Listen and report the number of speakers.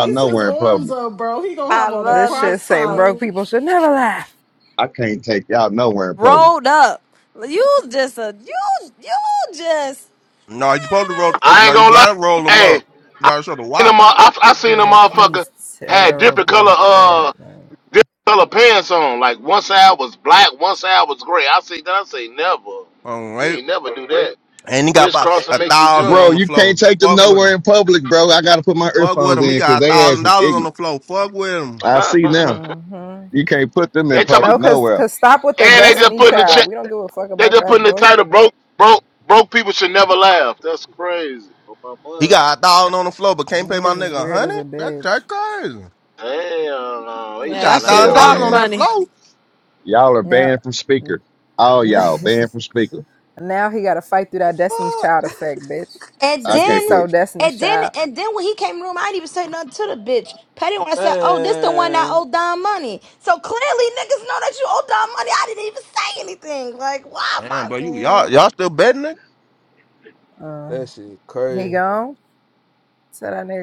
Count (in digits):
8